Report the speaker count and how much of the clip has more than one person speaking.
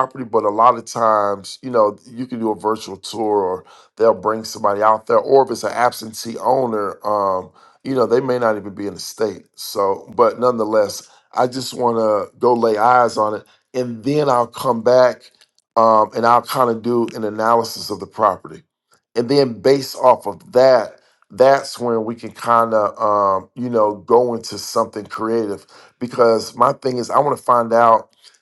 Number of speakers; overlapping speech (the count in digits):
1, no overlap